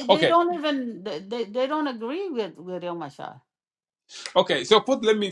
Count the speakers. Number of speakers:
two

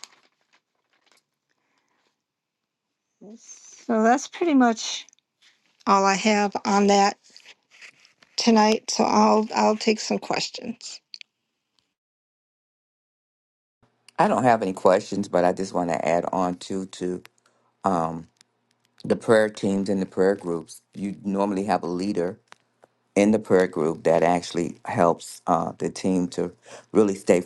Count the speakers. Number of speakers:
two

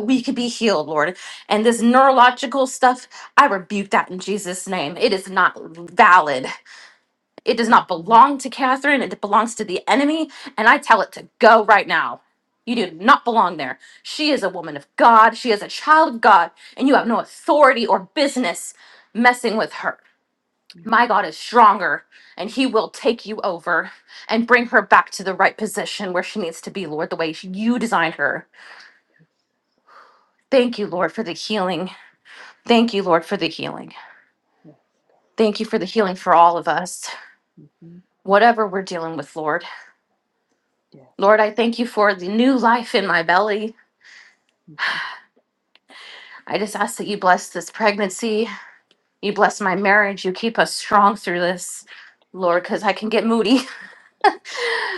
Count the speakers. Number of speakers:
two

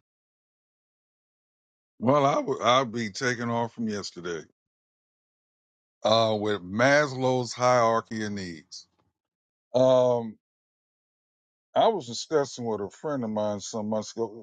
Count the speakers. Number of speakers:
one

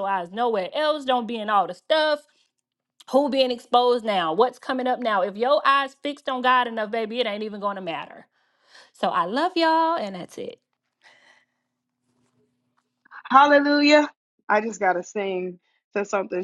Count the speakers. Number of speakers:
two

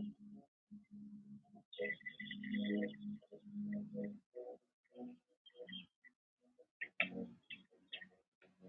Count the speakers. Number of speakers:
zero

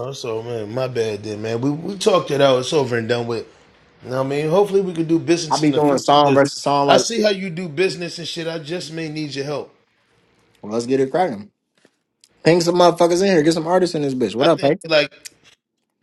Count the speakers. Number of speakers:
two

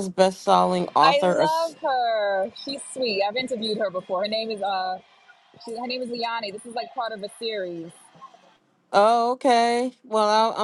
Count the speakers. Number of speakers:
two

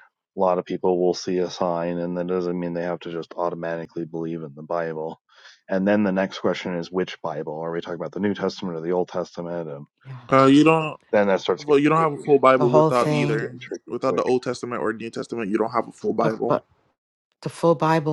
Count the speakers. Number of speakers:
three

